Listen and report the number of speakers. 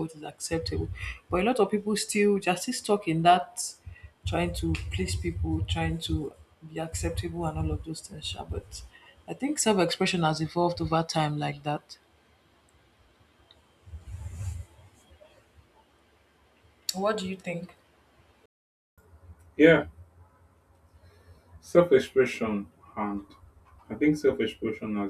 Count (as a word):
two